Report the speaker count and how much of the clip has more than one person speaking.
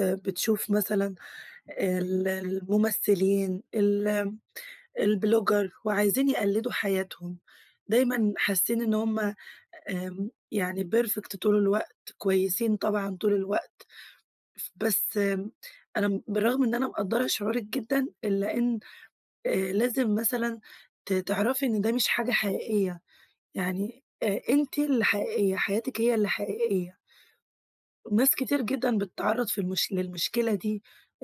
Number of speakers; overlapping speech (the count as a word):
one, no overlap